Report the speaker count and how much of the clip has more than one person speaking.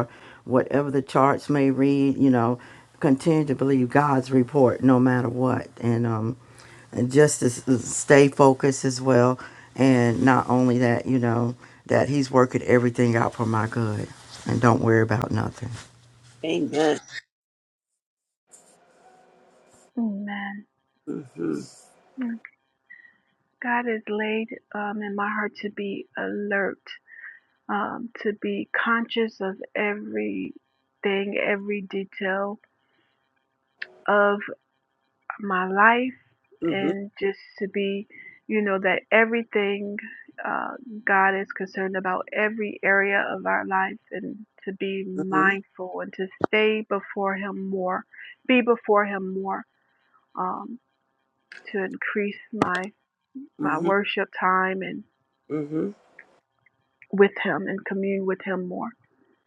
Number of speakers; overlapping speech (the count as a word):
three, about 1%